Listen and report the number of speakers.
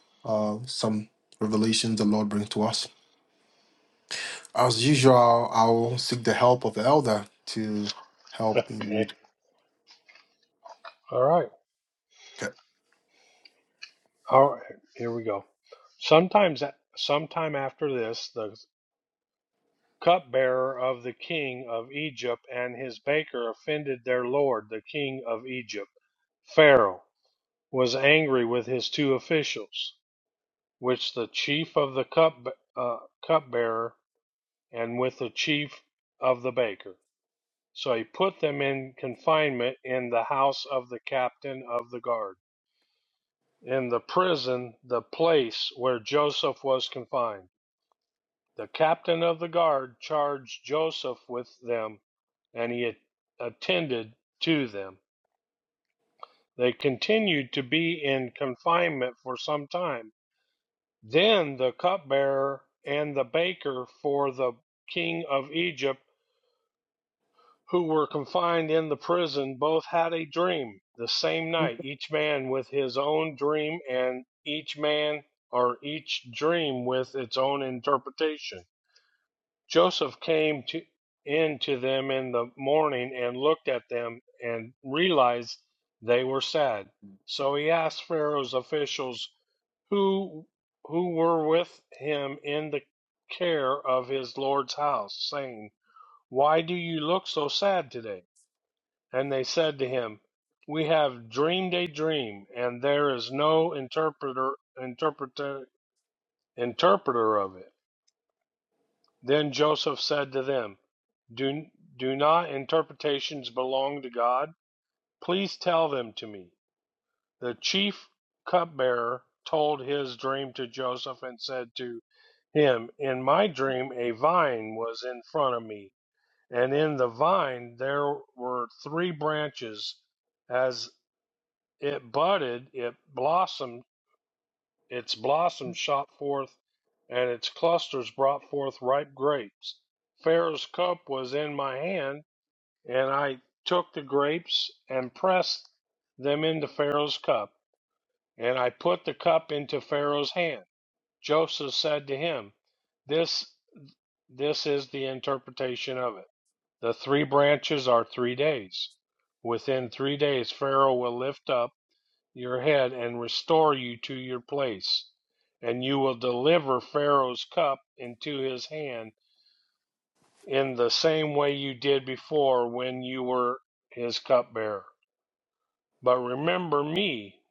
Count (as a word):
two